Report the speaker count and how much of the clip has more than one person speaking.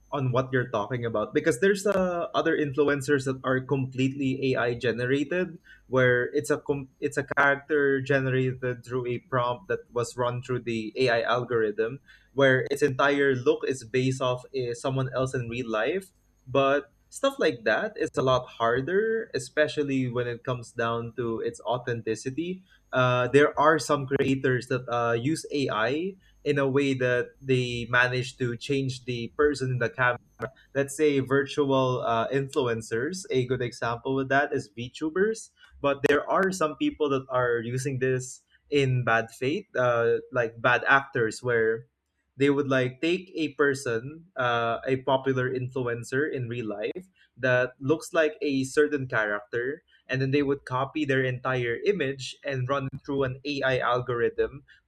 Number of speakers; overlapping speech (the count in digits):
1, no overlap